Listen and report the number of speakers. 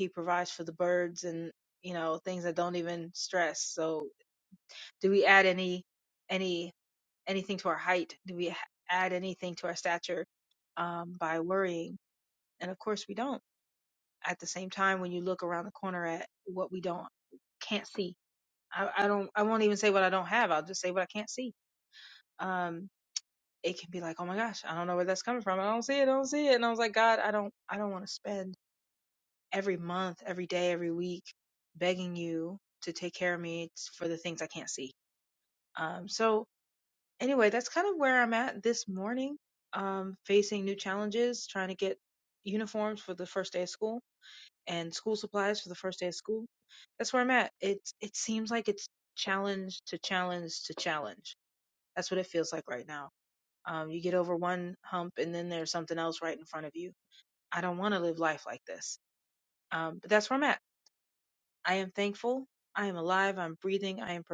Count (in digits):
1